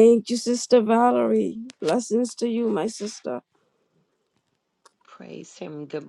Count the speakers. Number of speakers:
2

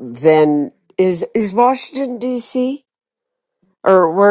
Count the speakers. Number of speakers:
1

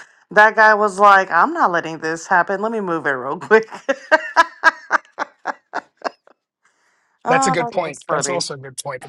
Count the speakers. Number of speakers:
2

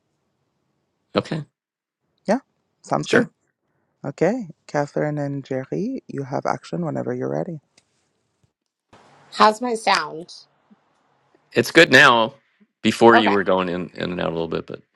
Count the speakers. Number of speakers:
3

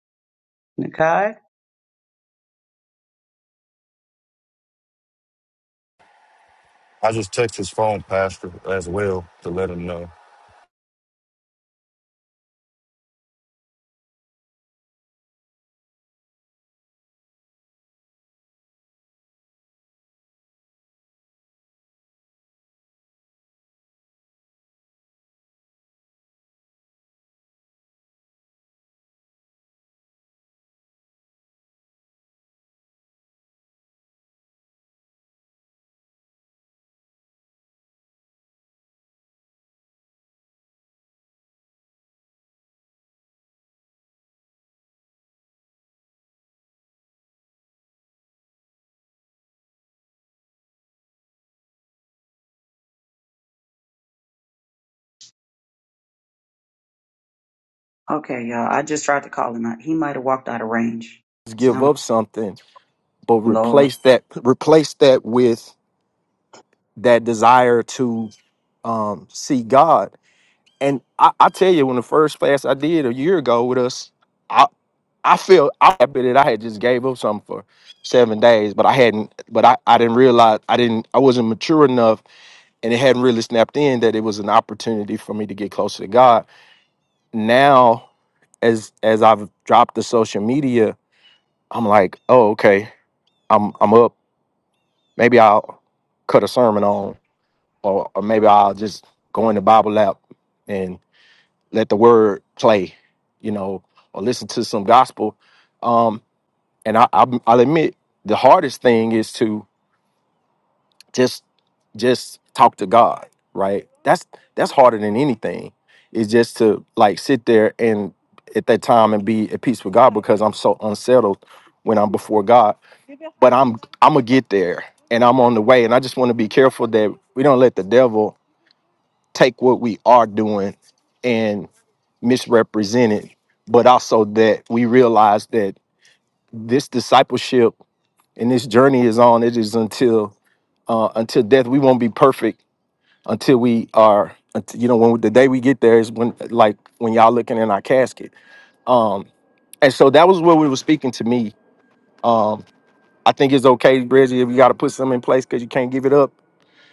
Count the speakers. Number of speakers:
3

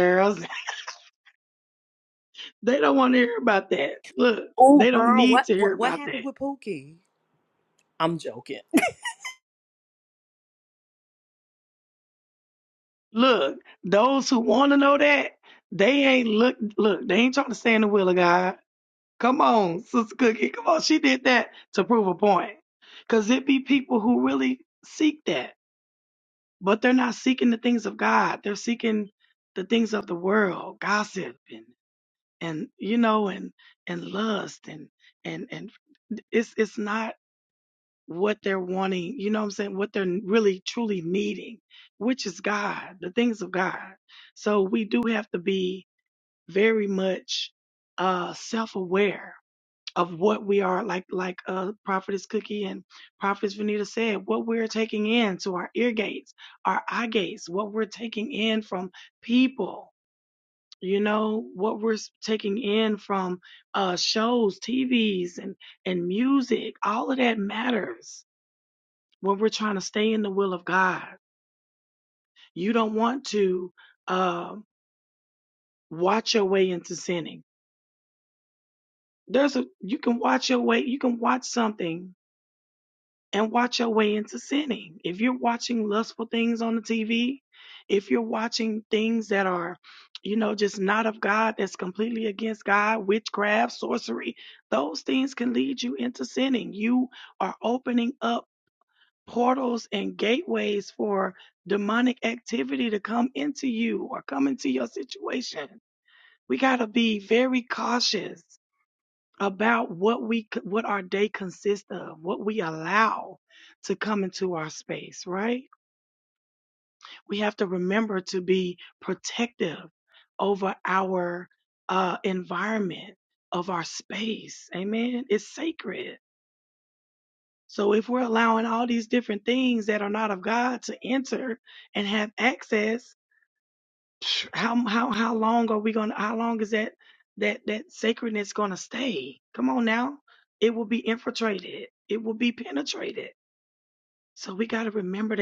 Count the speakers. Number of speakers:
2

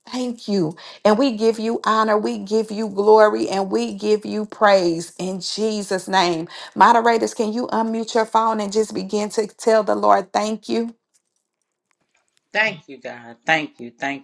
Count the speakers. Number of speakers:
2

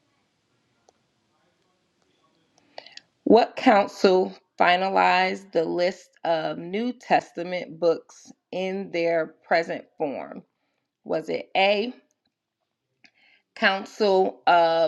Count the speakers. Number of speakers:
1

